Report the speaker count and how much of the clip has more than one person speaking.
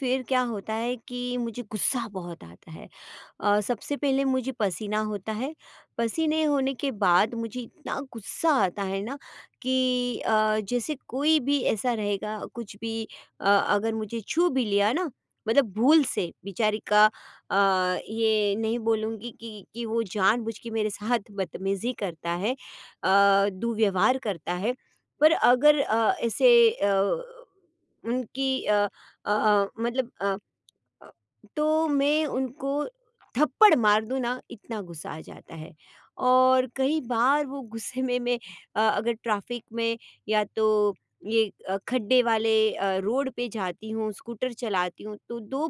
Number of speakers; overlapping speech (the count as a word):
one, no overlap